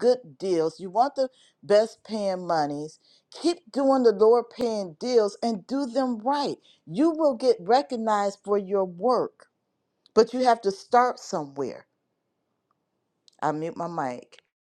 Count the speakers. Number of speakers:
1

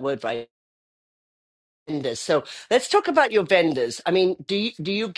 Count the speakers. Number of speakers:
1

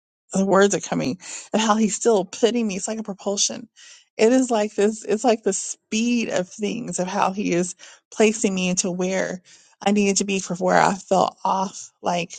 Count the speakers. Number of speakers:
1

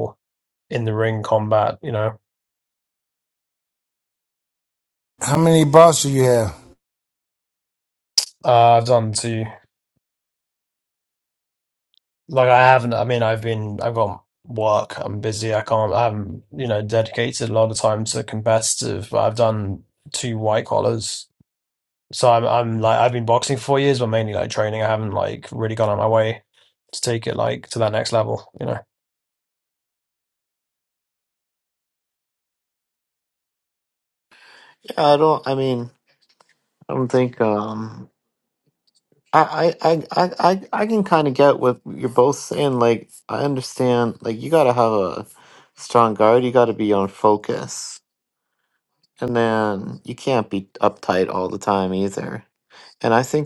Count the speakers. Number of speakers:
3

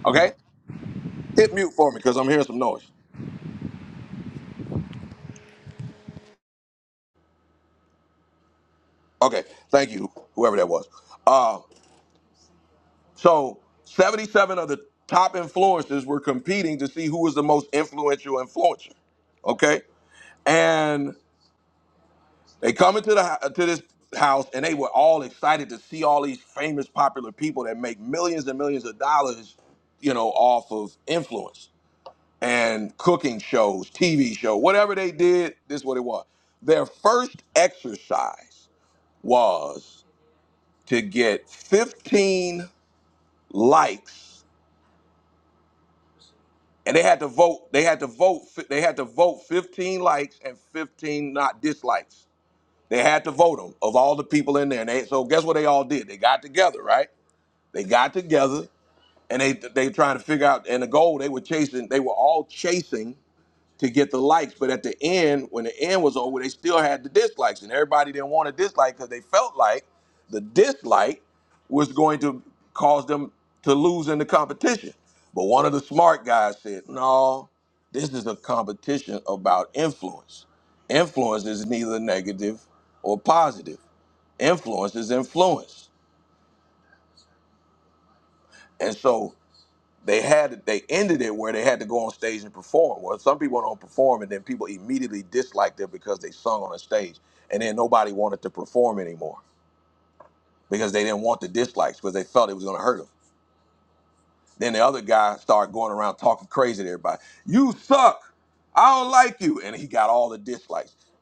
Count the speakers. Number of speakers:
1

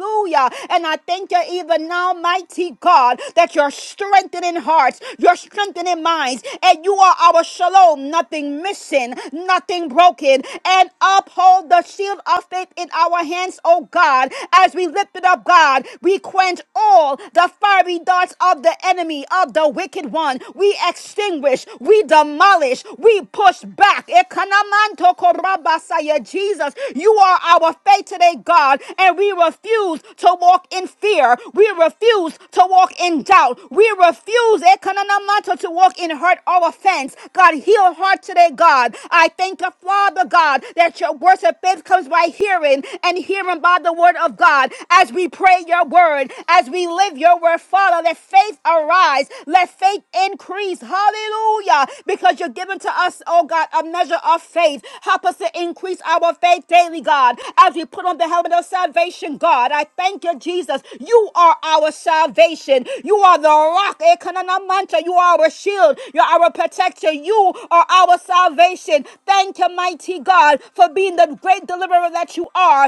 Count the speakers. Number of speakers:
1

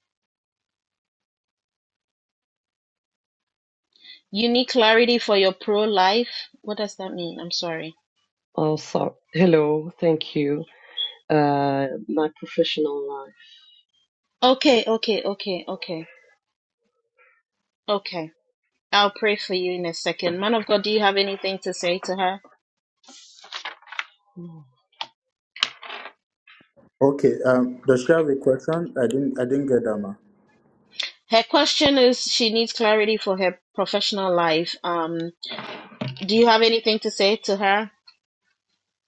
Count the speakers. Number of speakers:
3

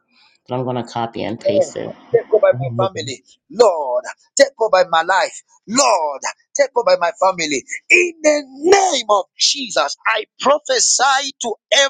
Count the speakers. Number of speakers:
2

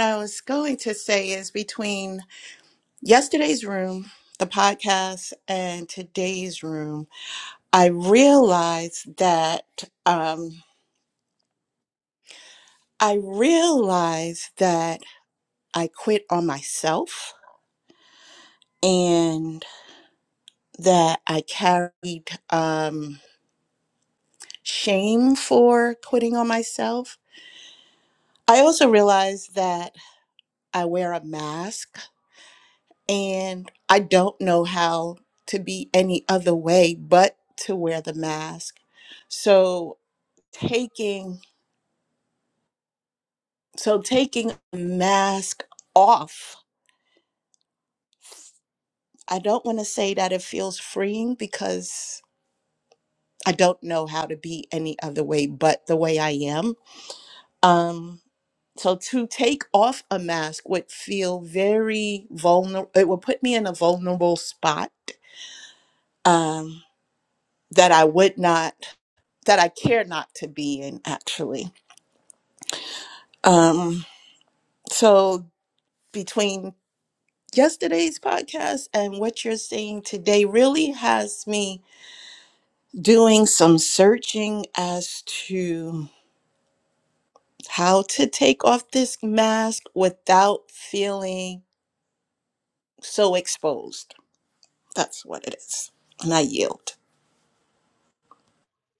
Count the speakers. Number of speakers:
1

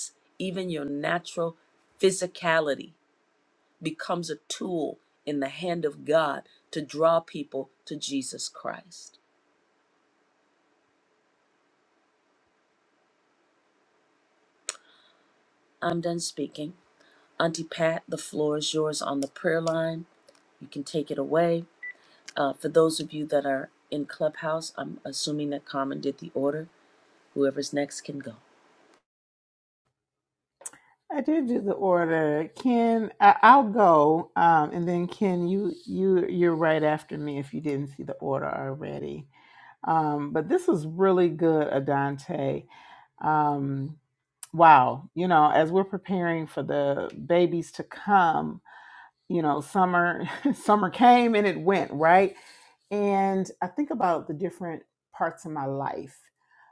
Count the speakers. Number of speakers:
2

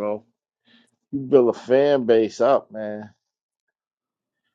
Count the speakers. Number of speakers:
1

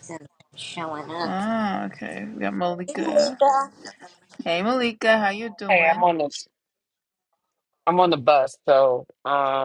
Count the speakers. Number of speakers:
3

